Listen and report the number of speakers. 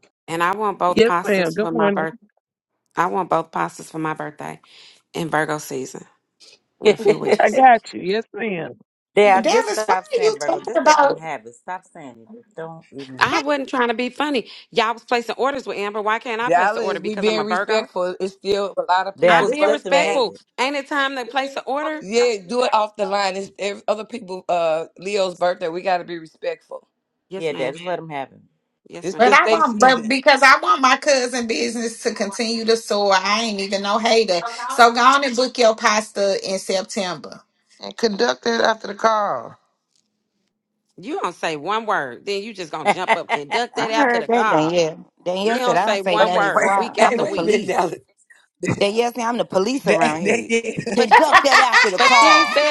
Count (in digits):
7